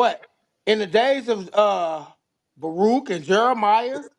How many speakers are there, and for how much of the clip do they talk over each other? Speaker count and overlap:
one, no overlap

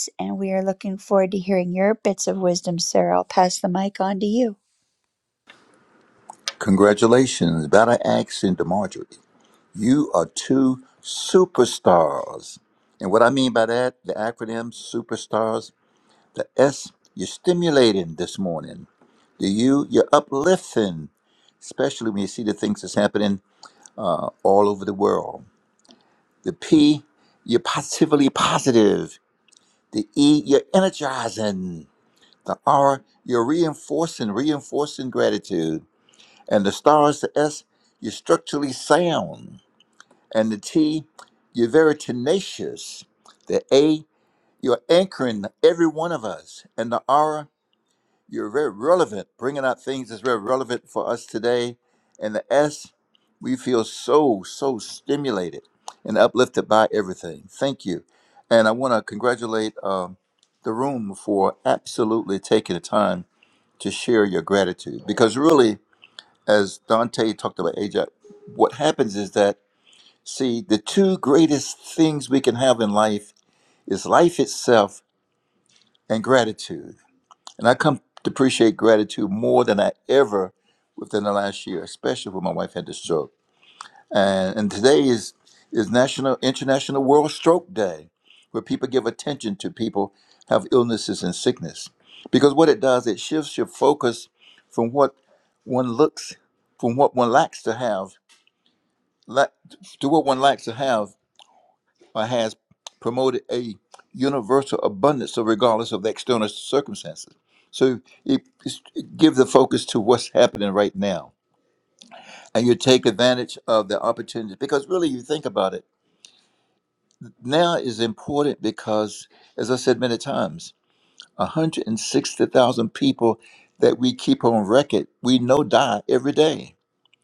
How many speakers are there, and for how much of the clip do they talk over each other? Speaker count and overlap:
two, no overlap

